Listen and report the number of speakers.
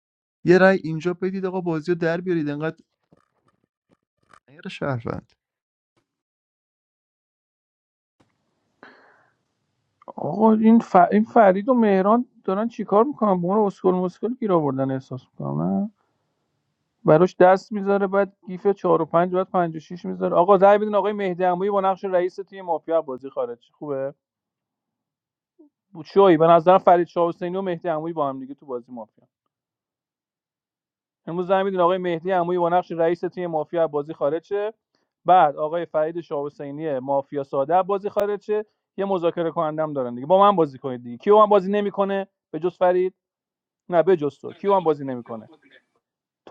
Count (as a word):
two